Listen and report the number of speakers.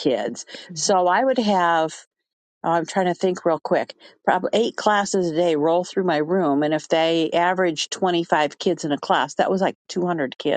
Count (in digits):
1